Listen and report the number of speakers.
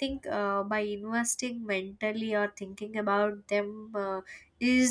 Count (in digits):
1